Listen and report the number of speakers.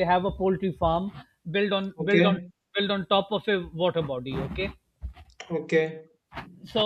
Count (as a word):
two